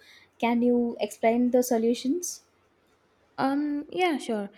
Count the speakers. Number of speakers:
2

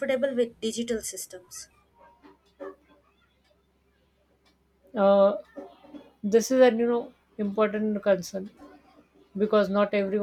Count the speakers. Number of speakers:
2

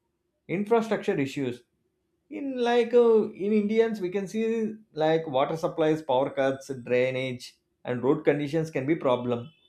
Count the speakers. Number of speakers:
1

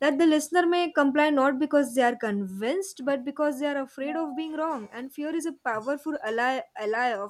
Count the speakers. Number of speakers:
1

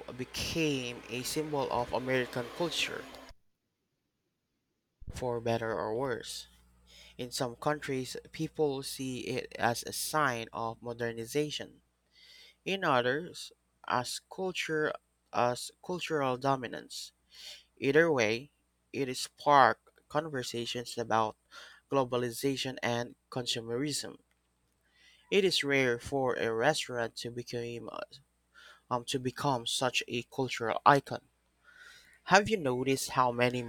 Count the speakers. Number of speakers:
1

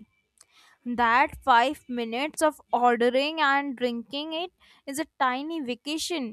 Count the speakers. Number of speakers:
1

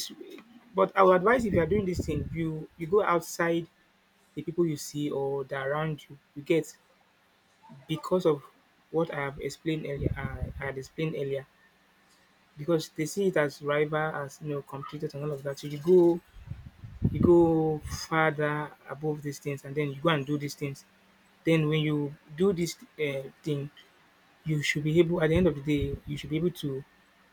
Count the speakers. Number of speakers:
1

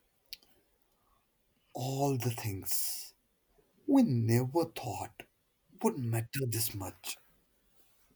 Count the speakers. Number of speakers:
1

